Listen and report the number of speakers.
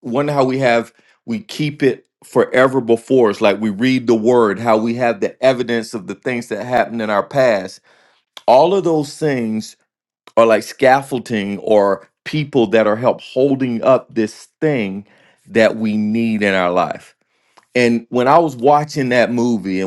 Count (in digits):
1